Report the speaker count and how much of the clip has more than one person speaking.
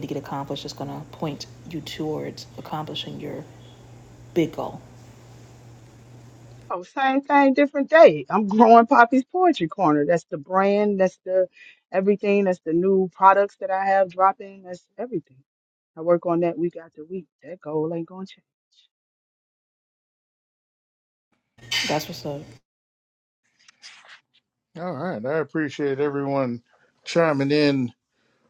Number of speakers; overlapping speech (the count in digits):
3, no overlap